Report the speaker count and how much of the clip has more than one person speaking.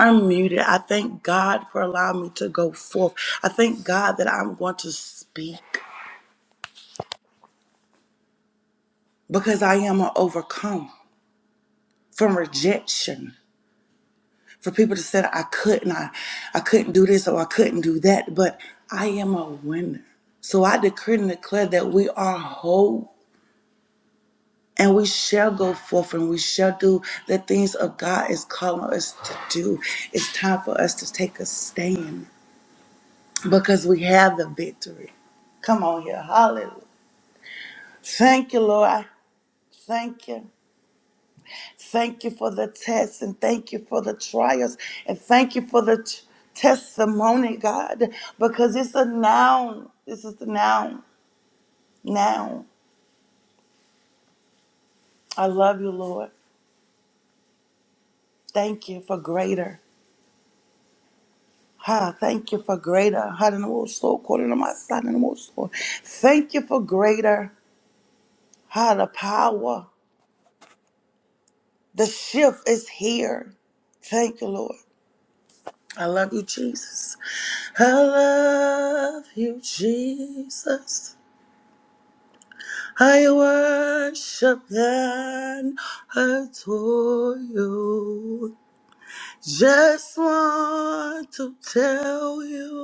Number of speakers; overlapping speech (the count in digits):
1, no overlap